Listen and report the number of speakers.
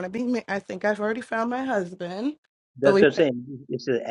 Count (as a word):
two